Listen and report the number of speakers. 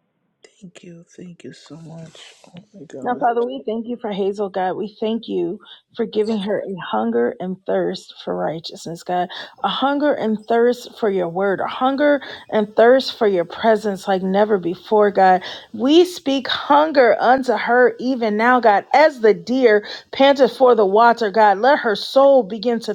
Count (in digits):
2